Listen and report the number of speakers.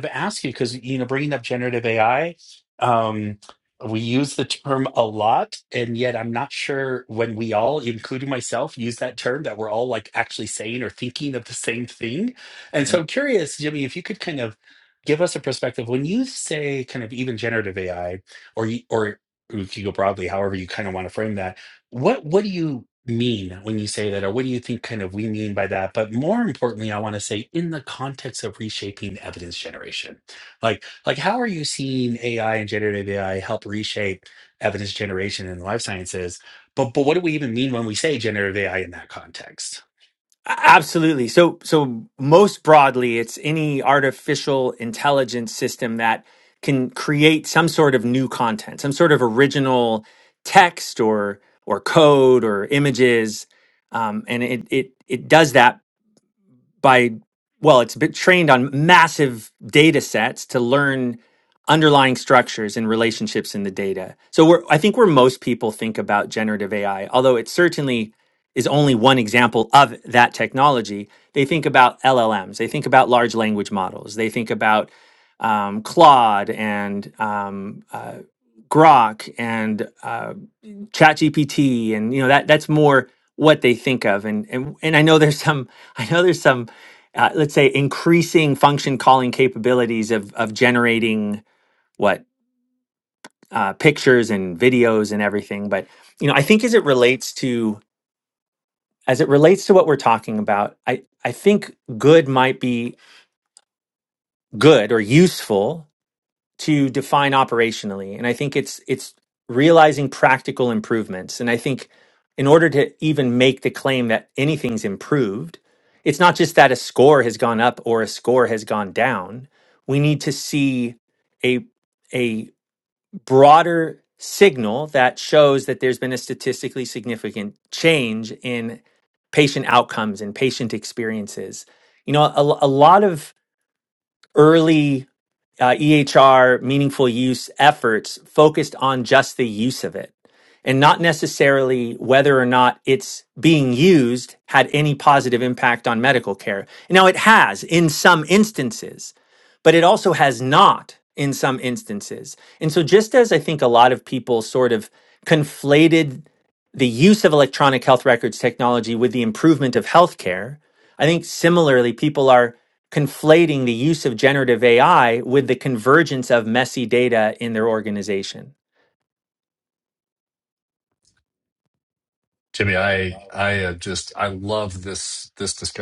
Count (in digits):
3